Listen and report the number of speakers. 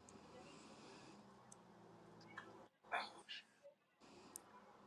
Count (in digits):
0